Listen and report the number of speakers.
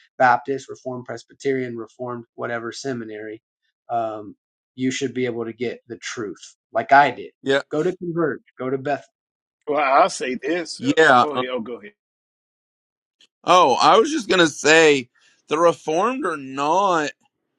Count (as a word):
three